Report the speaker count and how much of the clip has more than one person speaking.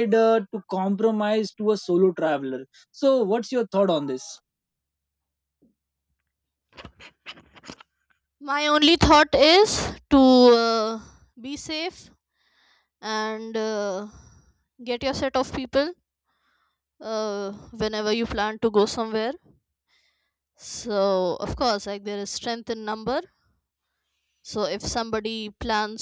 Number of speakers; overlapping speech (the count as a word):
two, no overlap